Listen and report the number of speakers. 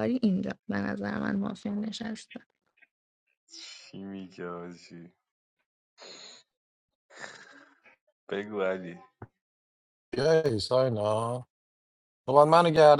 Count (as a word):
three